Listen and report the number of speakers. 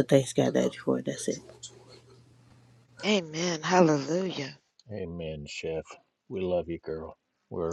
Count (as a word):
three